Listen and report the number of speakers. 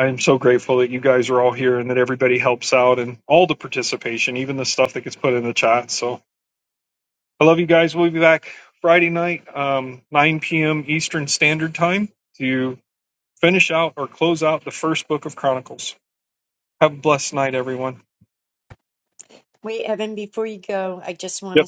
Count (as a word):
two